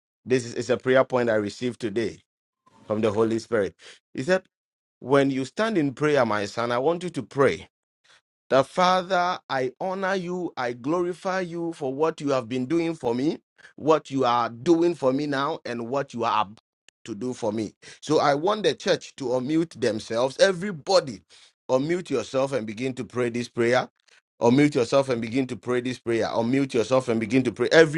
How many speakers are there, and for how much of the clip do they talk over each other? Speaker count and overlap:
one, no overlap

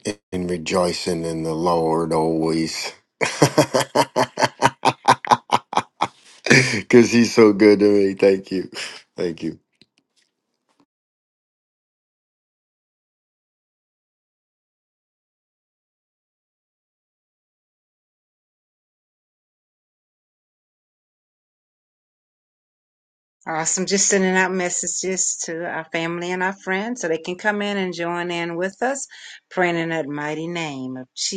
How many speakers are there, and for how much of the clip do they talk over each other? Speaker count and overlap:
two, no overlap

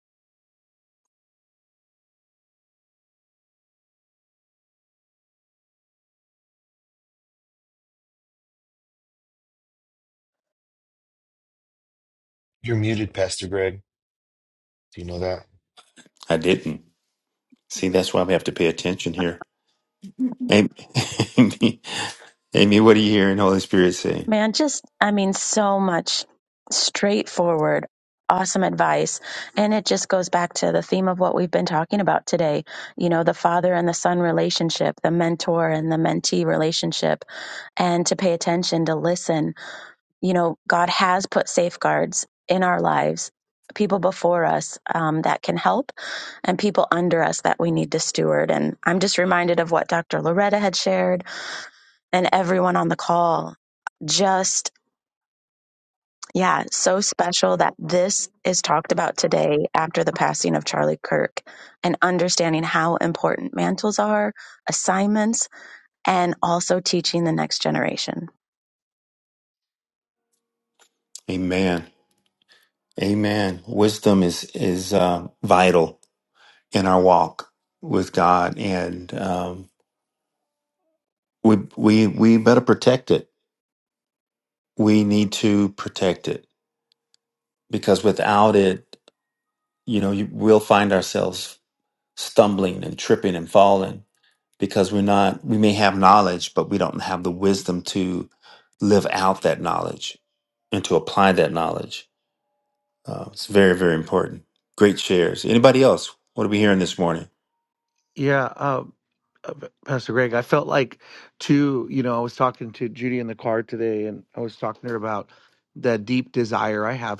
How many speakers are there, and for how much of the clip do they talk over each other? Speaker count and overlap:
four, no overlap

